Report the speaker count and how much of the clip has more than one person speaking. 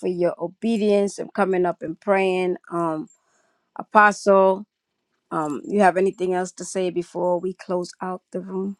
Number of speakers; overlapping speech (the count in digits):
1, no overlap